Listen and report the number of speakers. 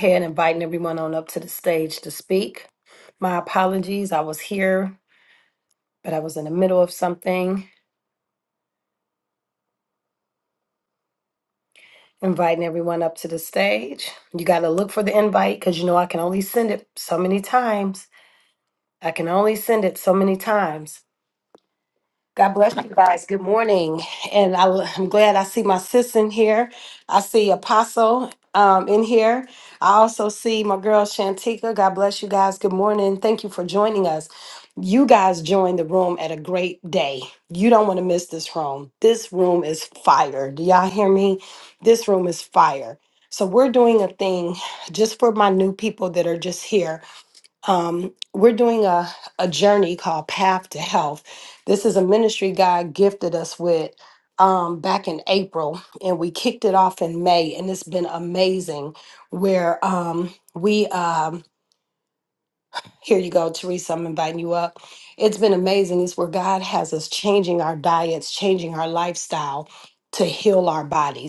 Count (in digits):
1